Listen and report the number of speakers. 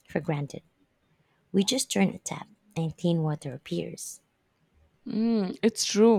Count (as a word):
two